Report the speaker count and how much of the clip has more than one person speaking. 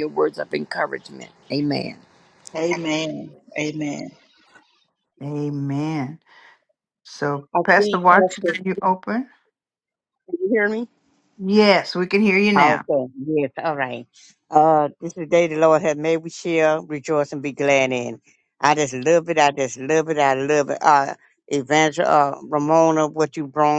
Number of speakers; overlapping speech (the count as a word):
four, about 6%